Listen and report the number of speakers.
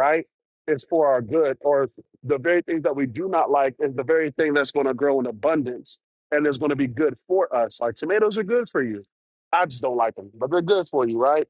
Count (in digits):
1